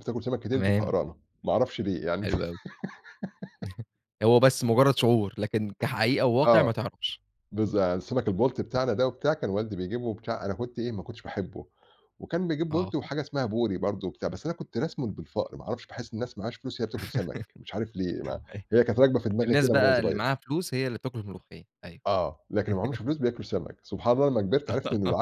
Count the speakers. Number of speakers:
two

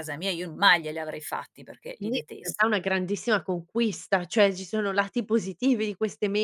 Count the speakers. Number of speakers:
two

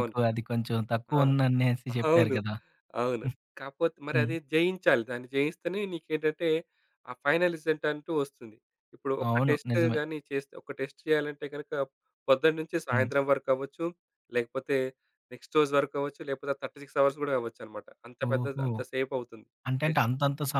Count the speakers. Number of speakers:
two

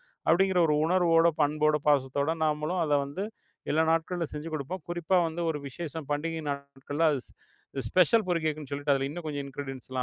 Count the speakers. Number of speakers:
one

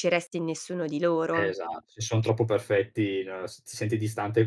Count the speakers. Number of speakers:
two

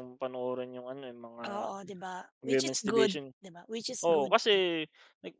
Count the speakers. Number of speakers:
two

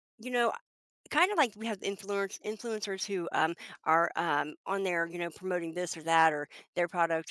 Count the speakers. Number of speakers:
one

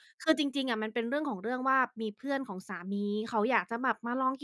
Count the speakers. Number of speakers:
one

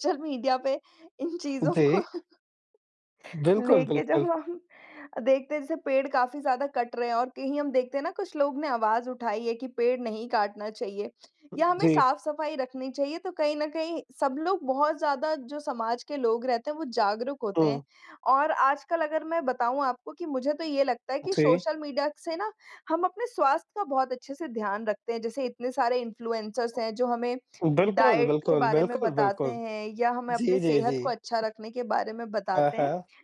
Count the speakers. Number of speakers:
two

